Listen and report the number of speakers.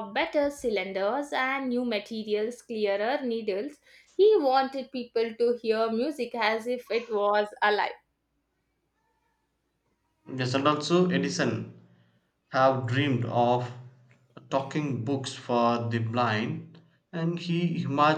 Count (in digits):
2